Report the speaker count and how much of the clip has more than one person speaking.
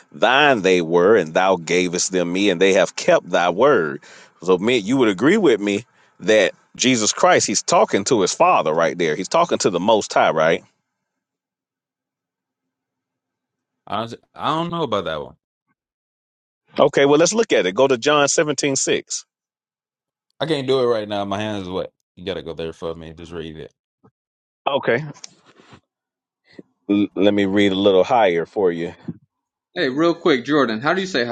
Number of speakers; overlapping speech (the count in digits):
3, no overlap